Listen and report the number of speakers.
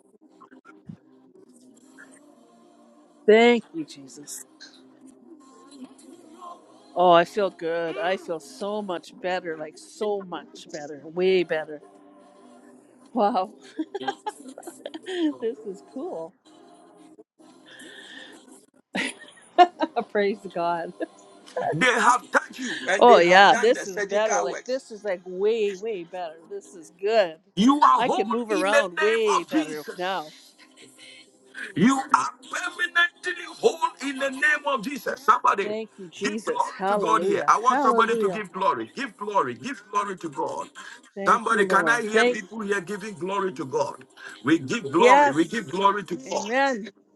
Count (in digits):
2